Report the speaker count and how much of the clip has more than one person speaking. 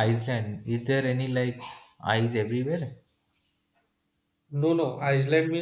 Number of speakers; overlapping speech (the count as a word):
two, no overlap